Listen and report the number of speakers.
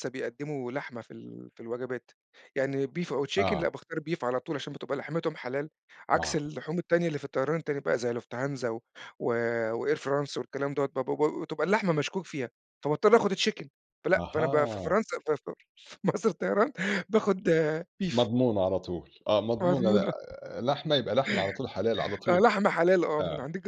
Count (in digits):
2